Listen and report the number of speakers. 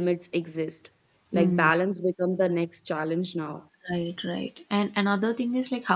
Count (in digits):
2